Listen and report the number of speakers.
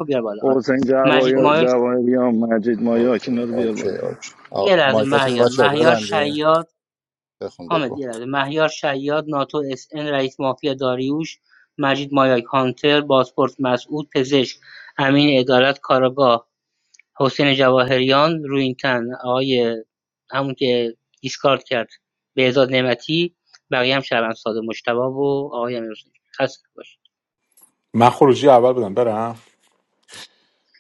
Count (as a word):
four